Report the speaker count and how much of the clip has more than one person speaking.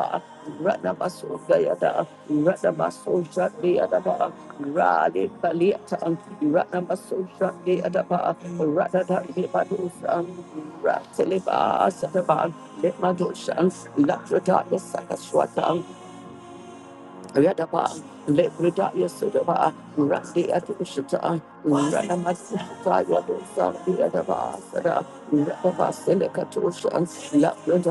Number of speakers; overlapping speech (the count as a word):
one, no overlap